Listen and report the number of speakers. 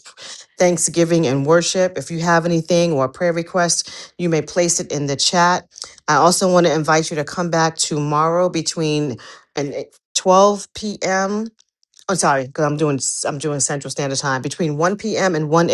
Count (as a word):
one